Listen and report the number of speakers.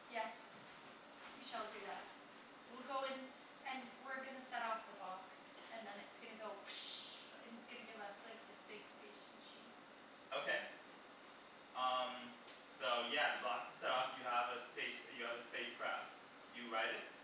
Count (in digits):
2